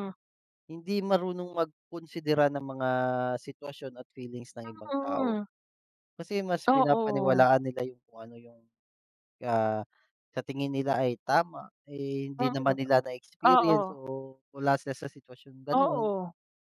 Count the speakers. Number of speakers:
two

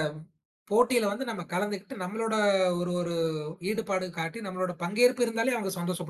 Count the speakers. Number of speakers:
one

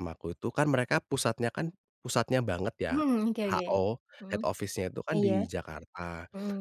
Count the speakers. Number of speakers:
two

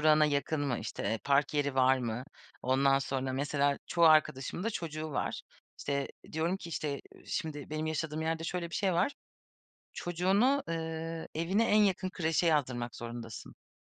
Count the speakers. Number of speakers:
one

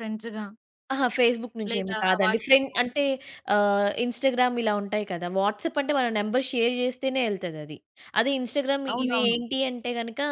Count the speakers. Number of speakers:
two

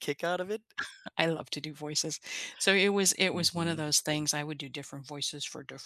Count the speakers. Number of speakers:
two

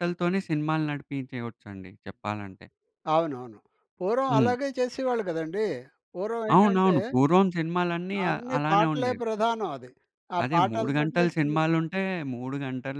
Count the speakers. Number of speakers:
two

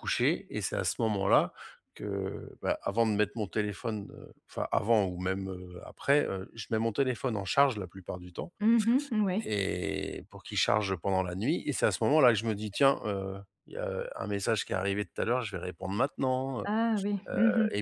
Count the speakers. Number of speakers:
two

